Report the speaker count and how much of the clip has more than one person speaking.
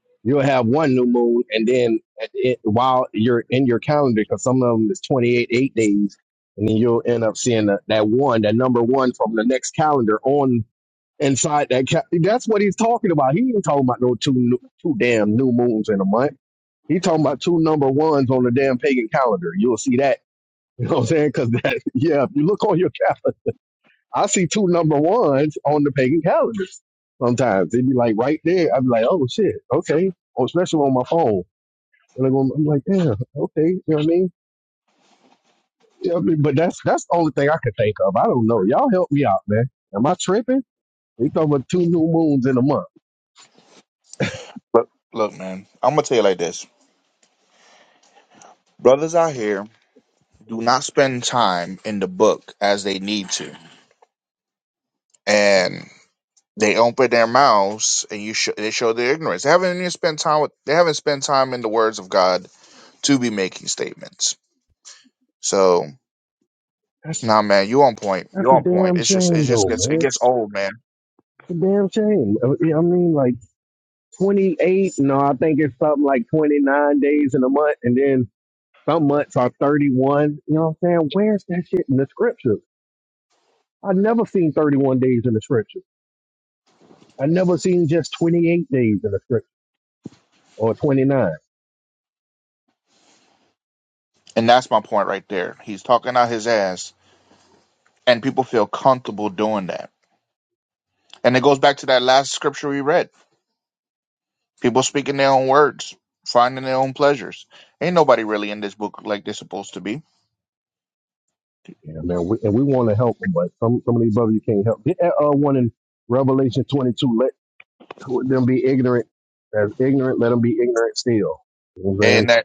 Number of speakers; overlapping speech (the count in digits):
2, about 2%